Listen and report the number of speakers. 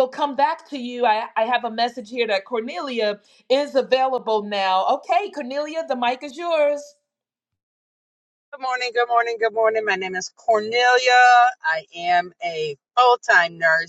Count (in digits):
2